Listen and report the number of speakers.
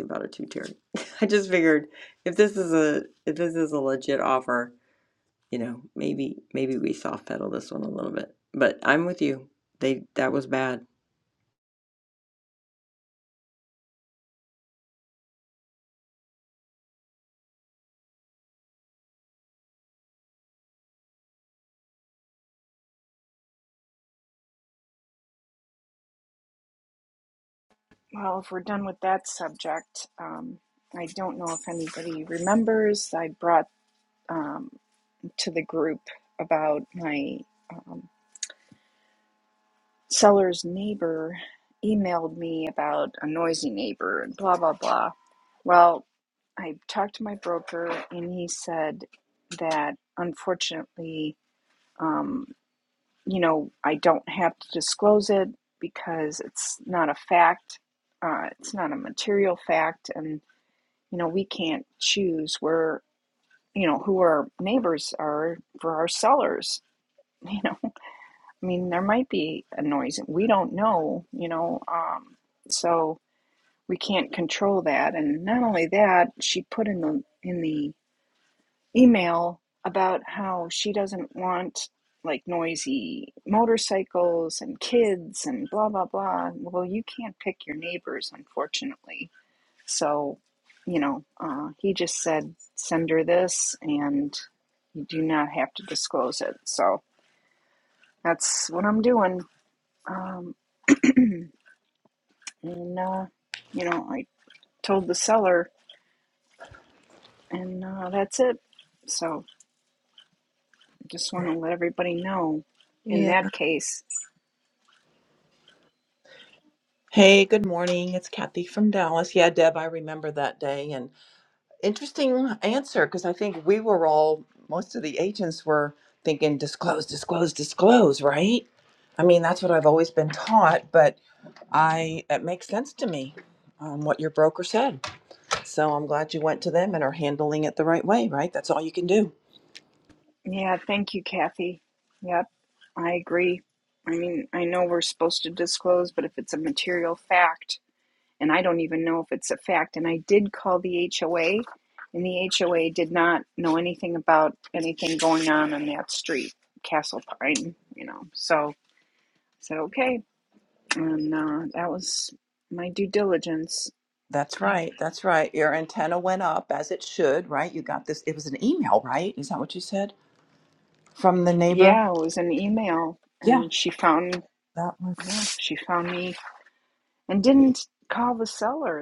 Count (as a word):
three